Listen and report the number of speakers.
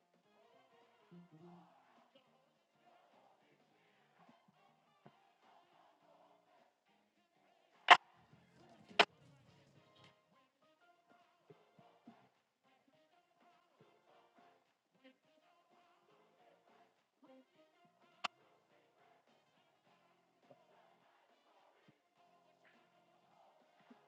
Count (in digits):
0